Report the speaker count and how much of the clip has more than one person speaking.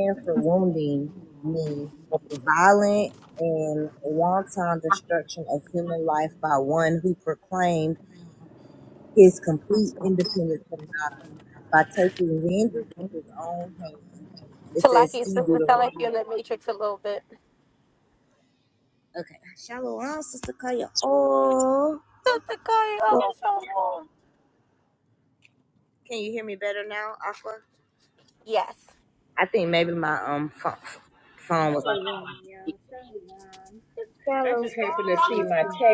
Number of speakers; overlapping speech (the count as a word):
three, about 5%